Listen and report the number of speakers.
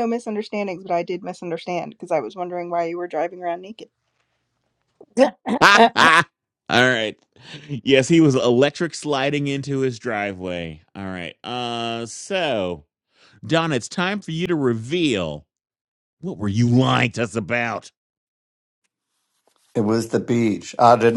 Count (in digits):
3